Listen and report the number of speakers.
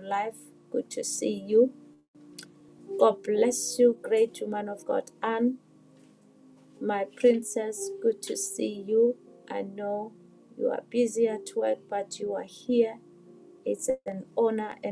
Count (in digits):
1